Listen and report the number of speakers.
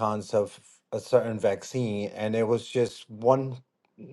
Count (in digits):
1